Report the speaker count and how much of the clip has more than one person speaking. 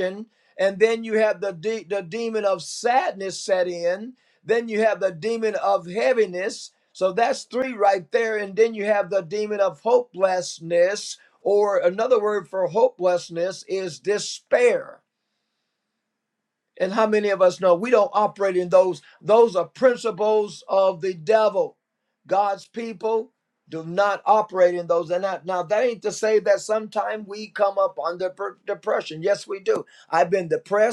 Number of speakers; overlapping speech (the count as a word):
one, no overlap